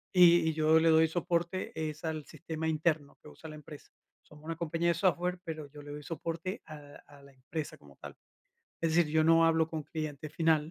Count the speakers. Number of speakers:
1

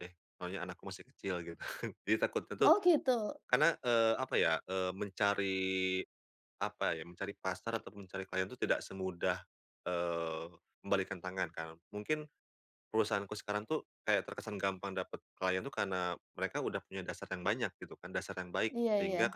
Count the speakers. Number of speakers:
2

